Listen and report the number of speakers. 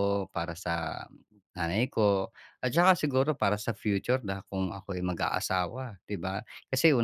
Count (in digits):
1